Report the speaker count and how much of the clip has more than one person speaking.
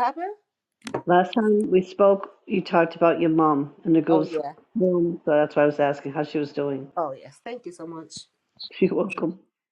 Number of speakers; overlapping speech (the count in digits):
2, about 3%